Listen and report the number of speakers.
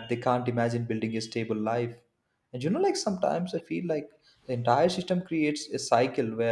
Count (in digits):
1